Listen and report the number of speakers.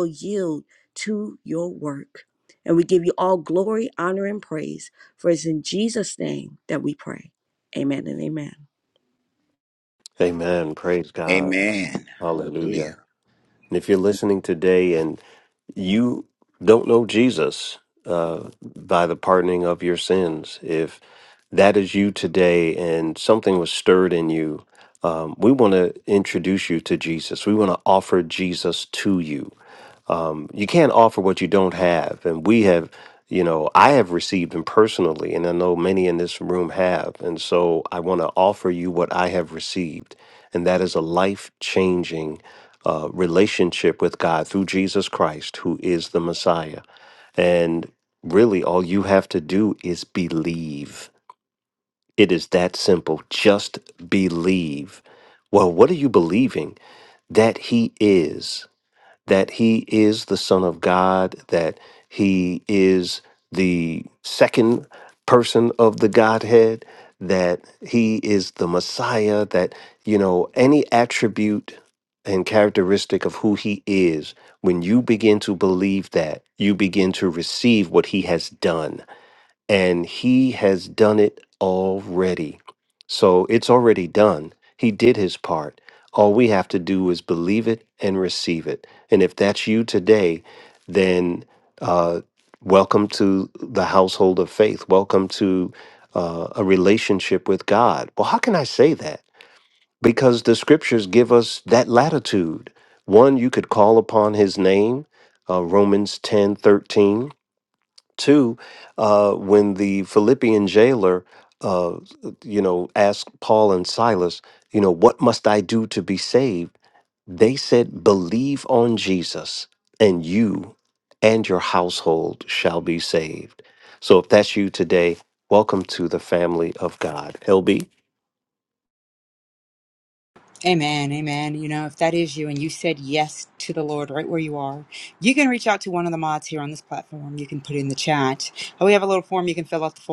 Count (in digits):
4